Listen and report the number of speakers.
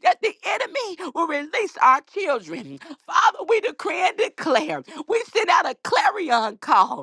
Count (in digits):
1